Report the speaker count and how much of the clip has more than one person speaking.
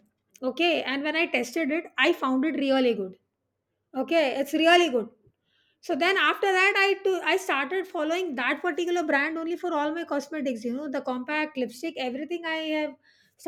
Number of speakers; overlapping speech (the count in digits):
1, no overlap